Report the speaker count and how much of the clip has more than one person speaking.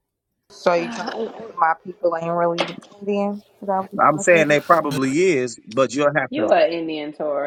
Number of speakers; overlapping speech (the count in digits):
3, about 15%